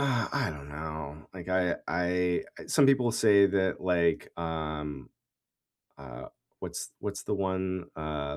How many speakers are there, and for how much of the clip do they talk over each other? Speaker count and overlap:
one, no overlap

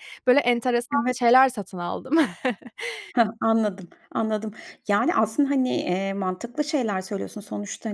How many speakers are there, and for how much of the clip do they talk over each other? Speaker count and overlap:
two, about 3%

